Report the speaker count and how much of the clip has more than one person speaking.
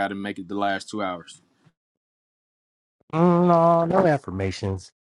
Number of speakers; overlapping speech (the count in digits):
2, no overlap